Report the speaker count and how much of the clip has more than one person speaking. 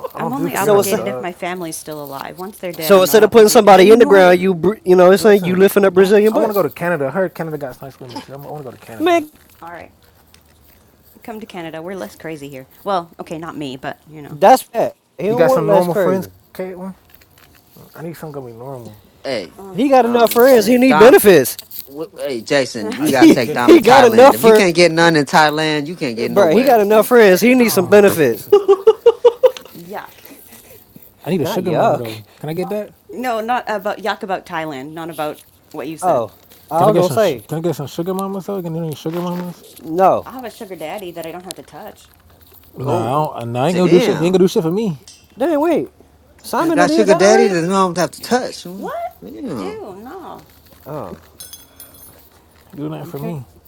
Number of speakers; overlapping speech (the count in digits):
4, about 24%